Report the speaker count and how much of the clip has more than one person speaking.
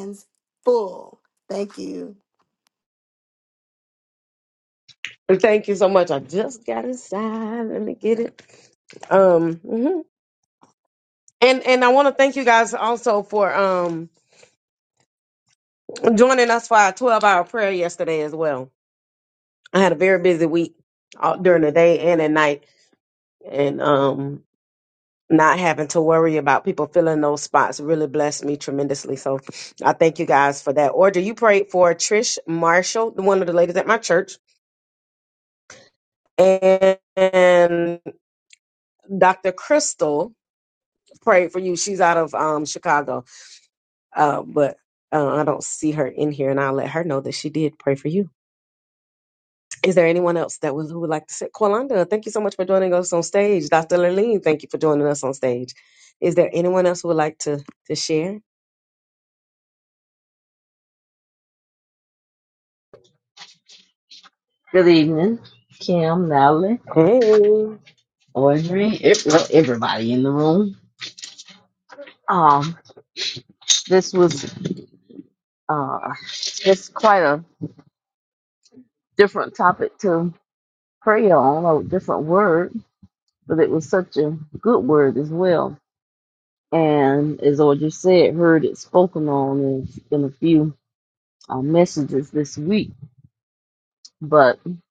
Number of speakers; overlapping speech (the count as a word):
three, no overlap